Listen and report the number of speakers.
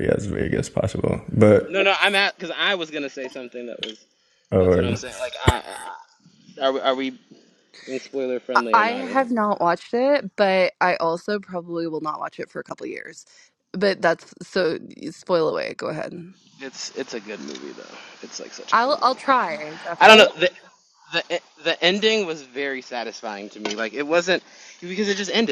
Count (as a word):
three